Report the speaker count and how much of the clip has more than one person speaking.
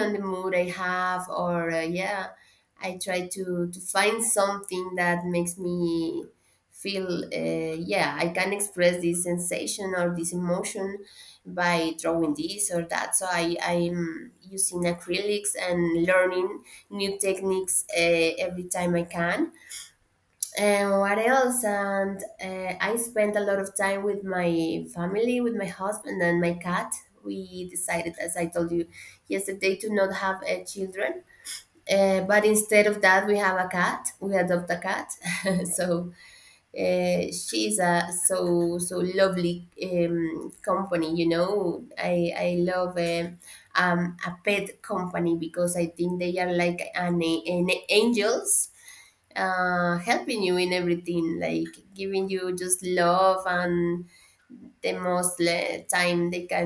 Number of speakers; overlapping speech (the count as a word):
one, no overlap